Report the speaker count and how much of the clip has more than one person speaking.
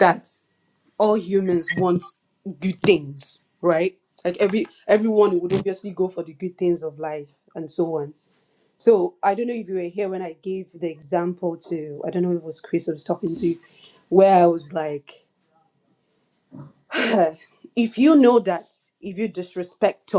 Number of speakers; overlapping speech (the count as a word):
one, no overlap